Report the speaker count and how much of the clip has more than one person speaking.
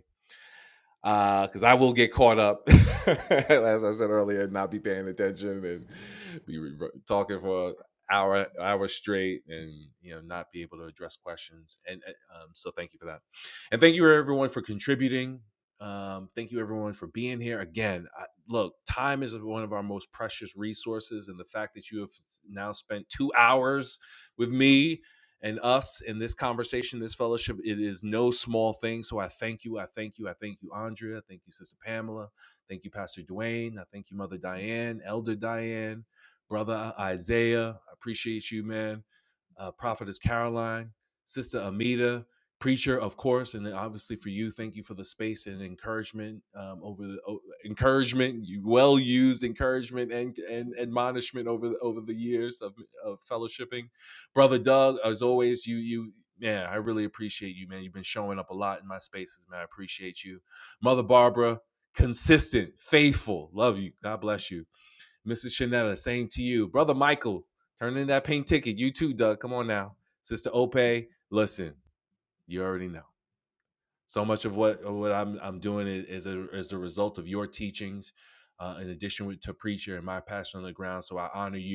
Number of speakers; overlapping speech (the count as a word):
one, no overlap